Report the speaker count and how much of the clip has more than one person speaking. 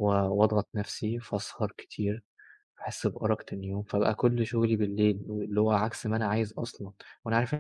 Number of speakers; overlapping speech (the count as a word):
one, no overlap